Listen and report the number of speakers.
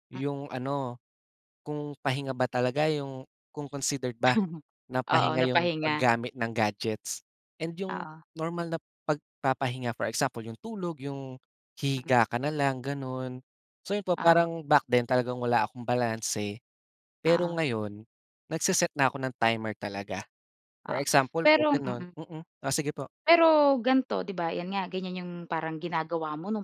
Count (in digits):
2